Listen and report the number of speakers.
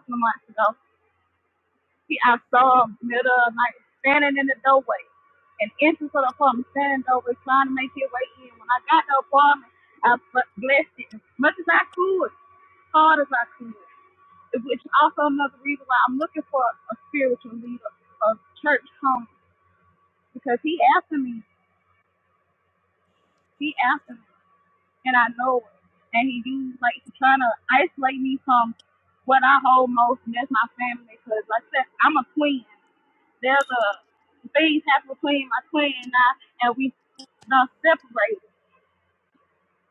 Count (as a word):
one